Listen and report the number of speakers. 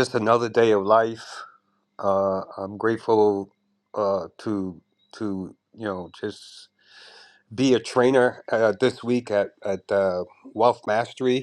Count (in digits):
1